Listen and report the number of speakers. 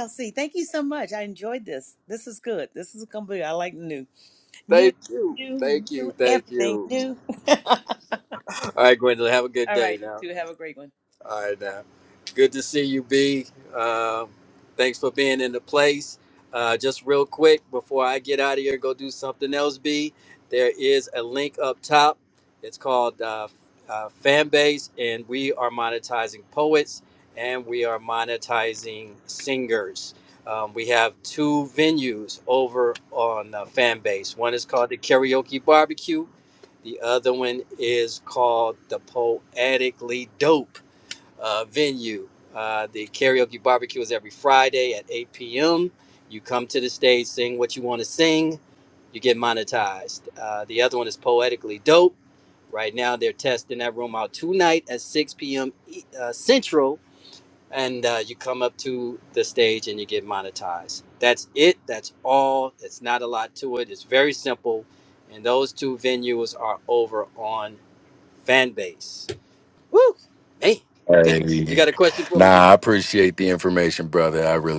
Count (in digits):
3